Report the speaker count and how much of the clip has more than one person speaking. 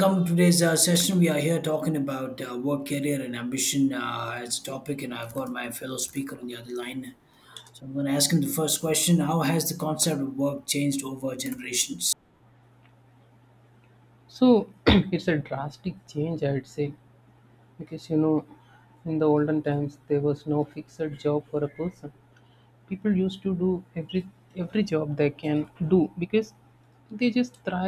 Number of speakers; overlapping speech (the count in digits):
2, no overlap